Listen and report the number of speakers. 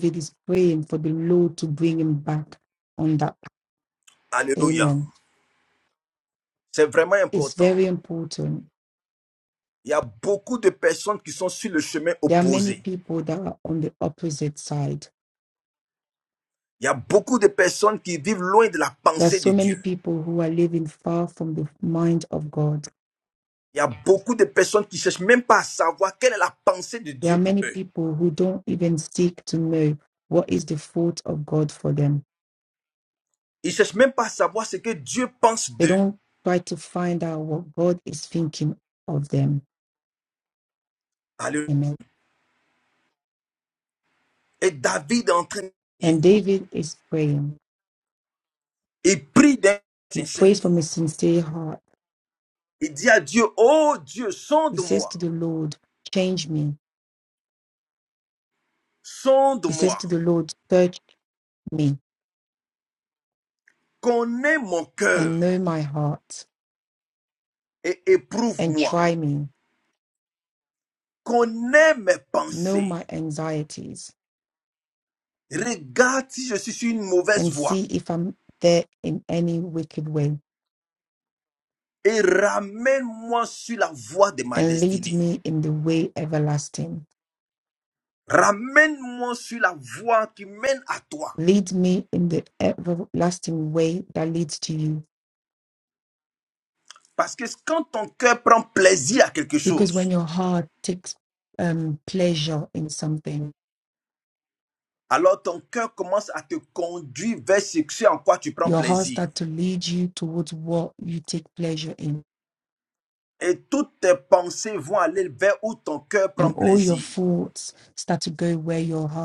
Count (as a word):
two